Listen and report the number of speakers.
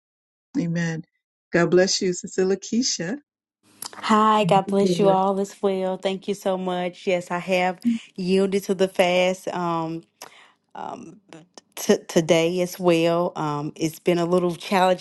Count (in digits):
2